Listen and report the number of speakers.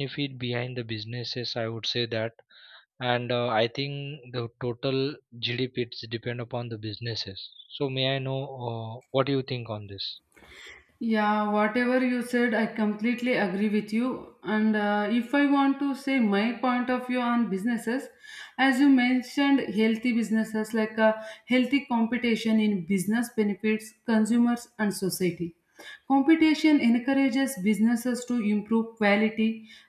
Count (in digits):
2